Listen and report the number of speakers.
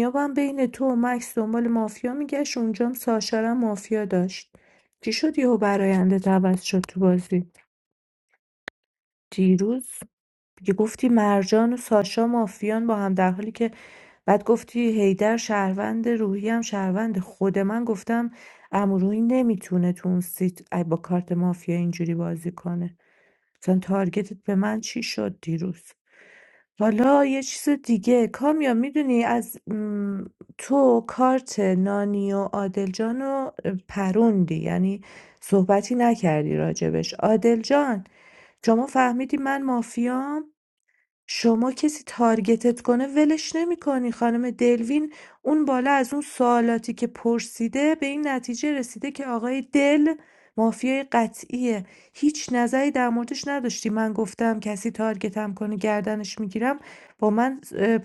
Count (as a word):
one